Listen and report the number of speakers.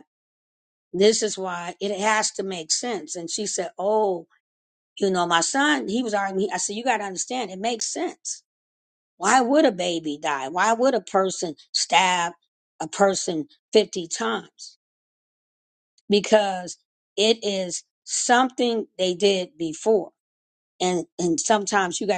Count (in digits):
1